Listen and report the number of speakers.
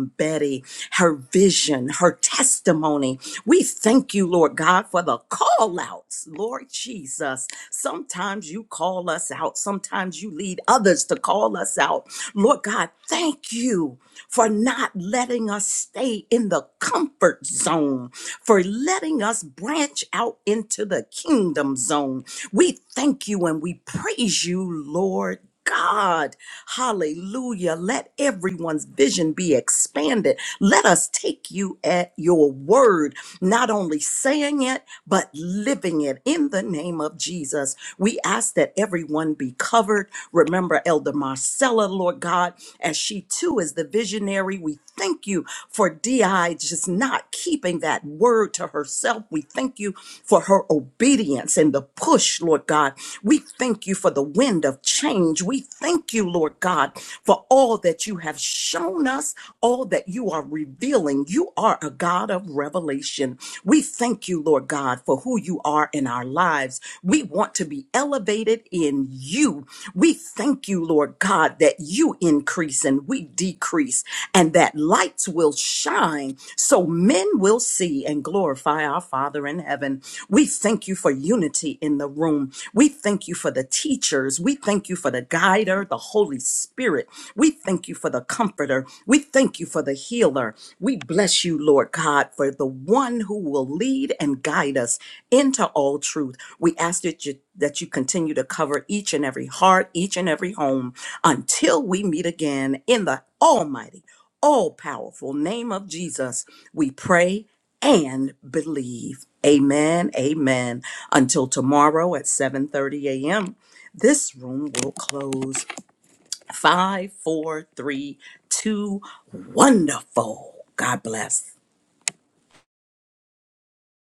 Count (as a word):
one